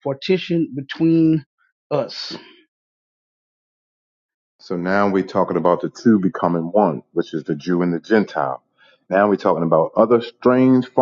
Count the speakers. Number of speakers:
two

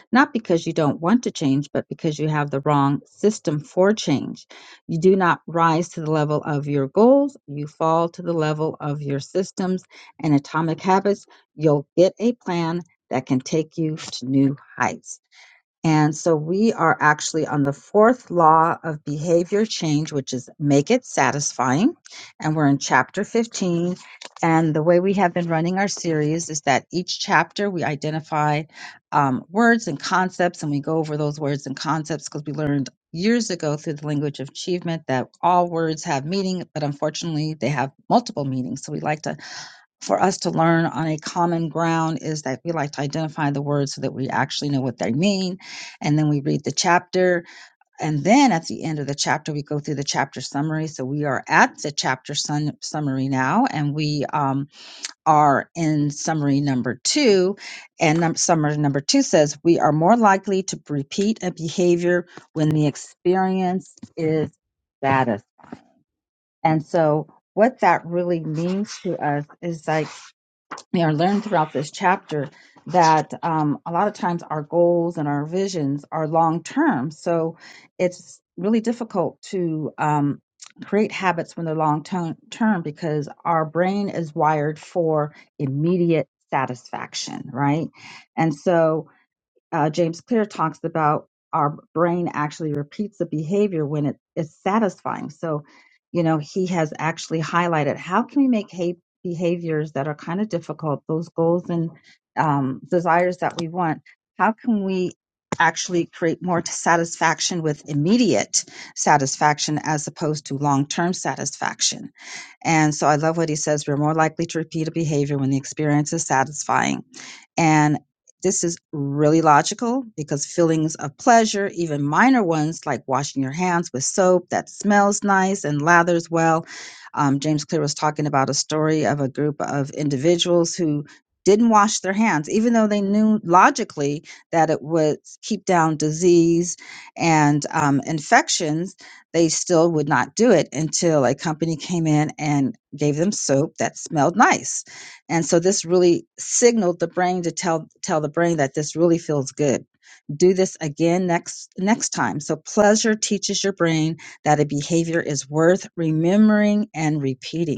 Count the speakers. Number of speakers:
one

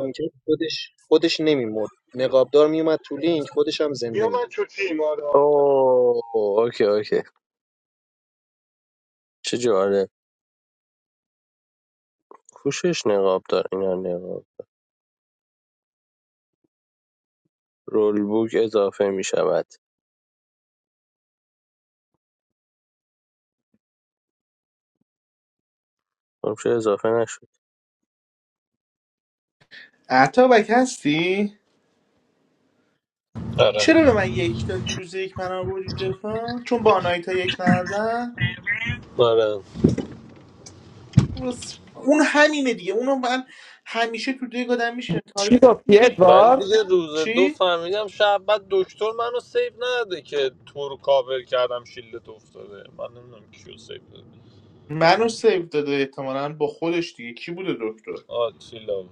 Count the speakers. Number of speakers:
six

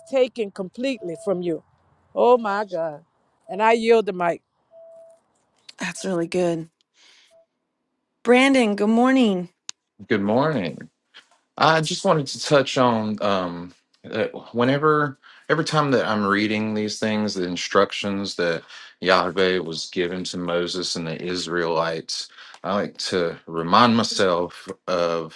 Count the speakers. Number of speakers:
three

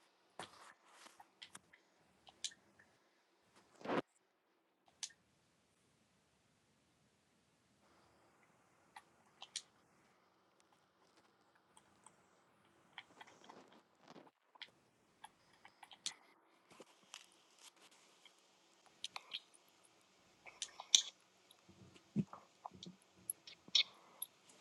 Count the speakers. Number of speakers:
zero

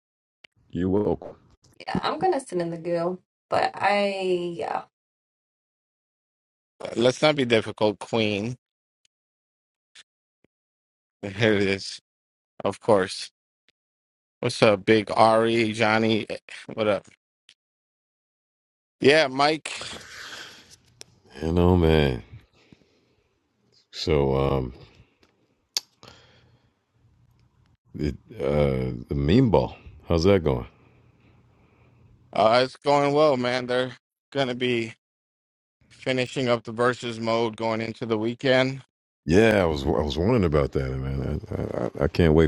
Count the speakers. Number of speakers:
three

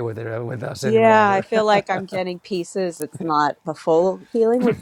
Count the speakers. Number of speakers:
two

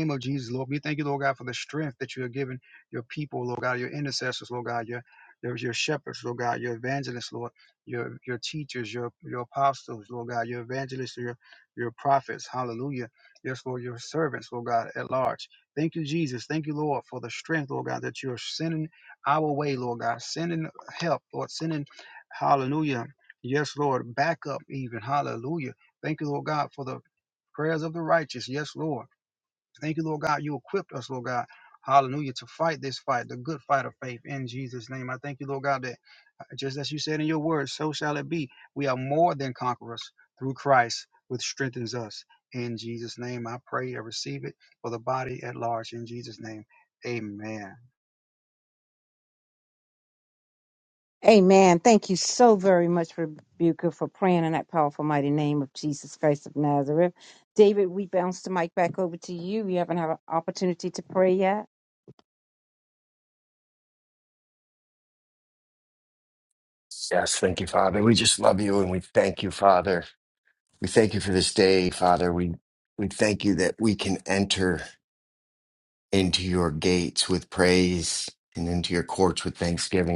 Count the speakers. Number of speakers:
three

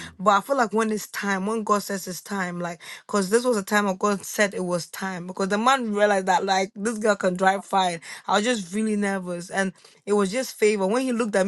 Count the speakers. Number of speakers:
one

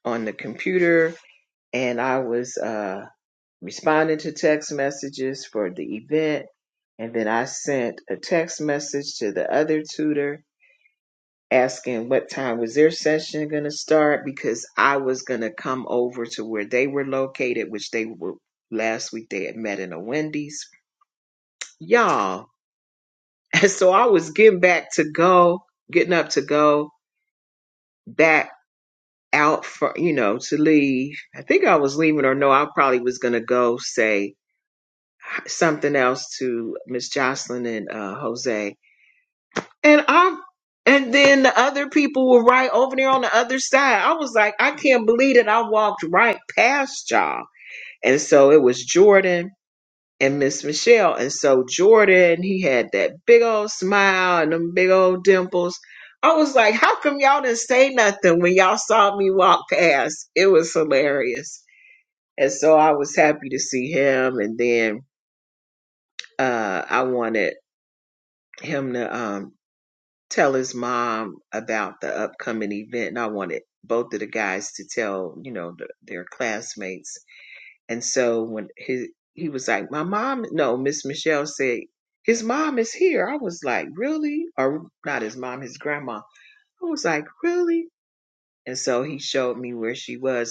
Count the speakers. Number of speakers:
one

